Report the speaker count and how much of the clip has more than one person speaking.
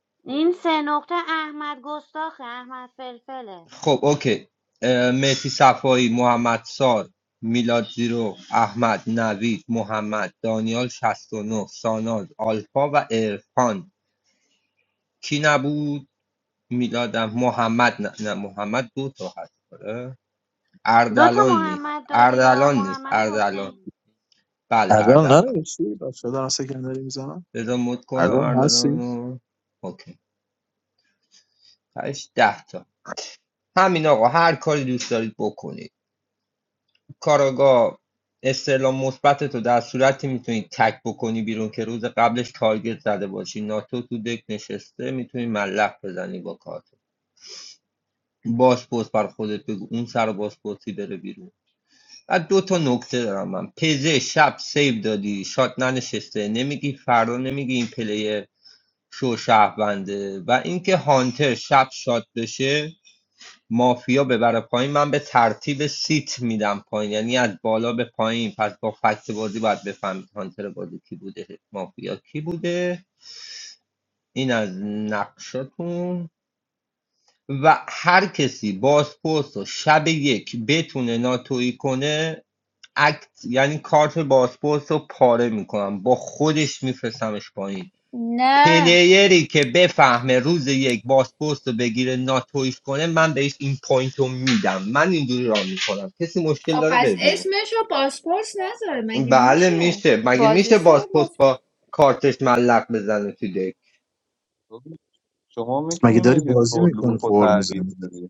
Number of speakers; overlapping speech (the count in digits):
5, about 8%